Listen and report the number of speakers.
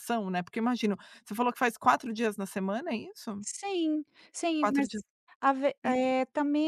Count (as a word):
two